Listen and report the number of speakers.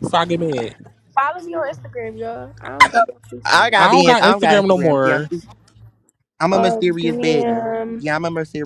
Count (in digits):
3